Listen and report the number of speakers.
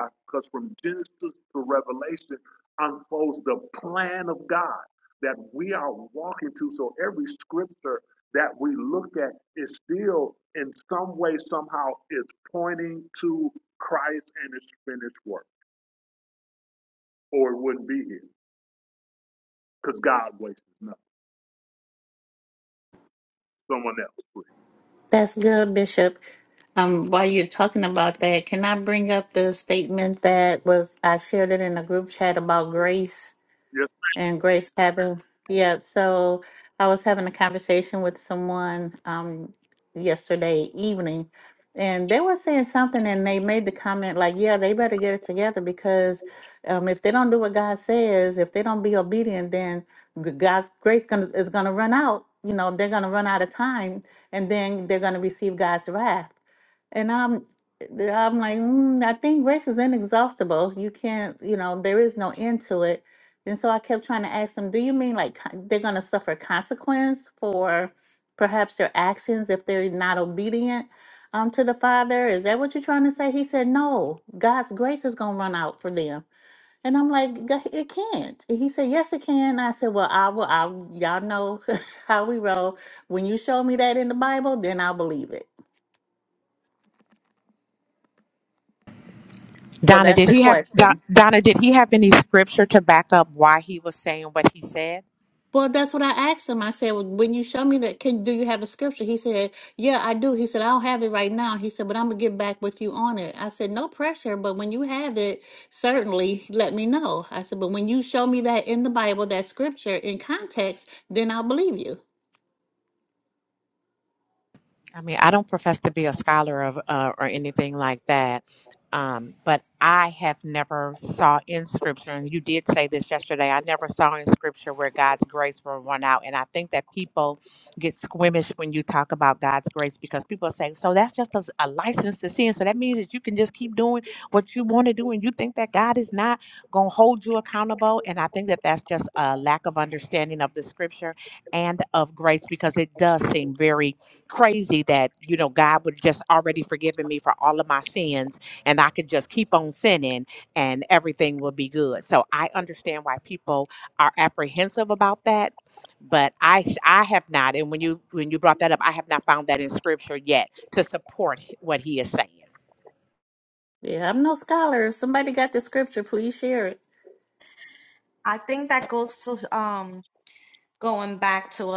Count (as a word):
four